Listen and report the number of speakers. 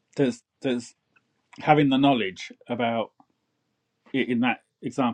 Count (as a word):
one